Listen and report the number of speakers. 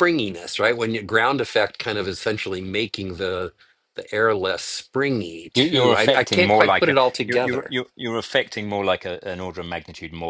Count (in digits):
2